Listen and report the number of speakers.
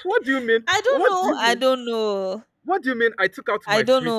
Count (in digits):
2